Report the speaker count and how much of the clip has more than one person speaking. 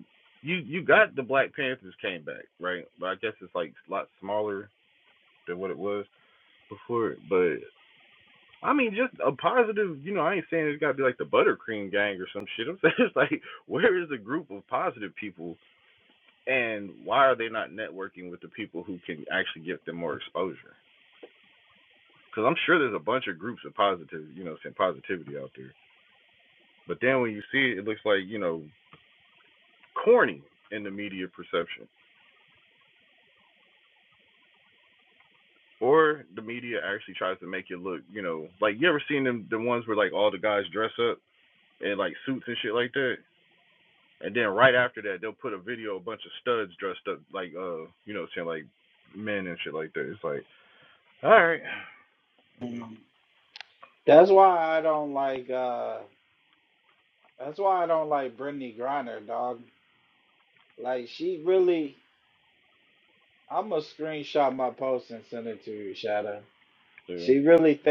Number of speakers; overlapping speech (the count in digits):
2, no overlap